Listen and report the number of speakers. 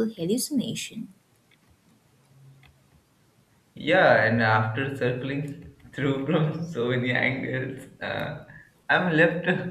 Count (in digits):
2